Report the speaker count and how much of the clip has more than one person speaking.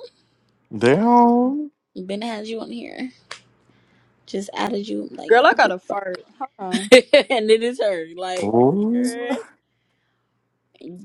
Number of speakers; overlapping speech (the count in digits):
3, about 3%